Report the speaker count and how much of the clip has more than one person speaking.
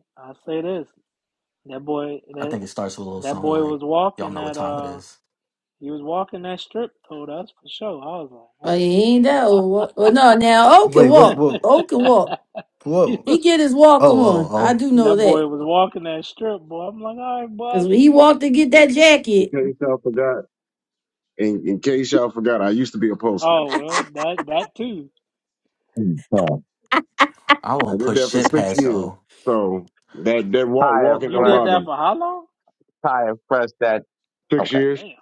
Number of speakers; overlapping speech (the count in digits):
5, about 25%